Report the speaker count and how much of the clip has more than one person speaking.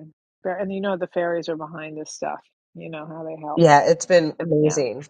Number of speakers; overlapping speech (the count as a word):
two, about 6%